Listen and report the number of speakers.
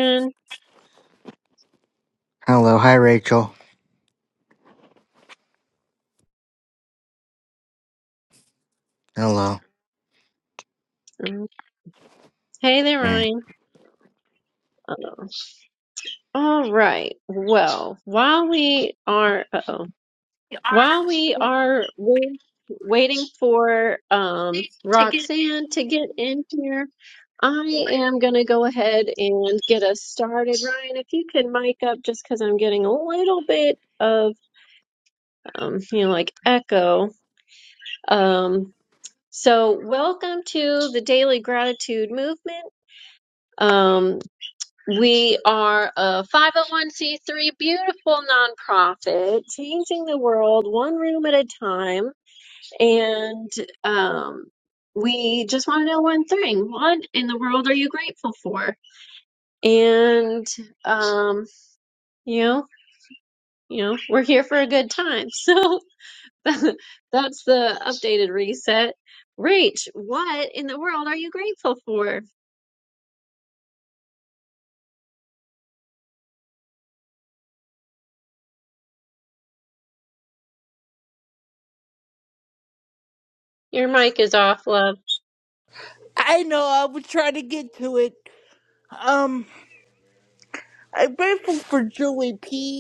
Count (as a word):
three